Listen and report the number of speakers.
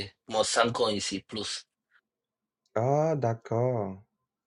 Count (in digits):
2